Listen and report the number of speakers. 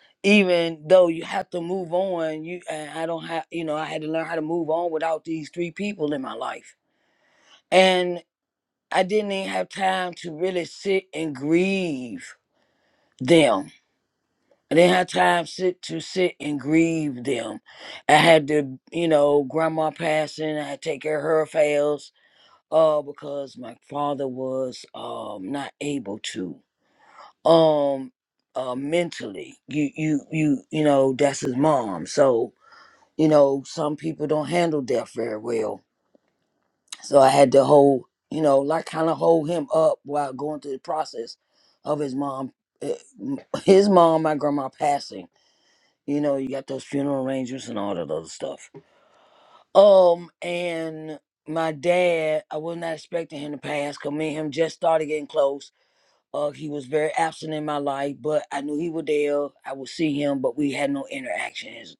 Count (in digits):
1